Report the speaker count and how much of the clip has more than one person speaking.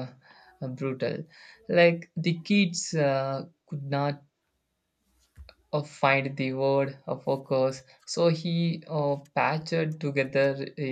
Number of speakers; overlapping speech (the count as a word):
one, no overlap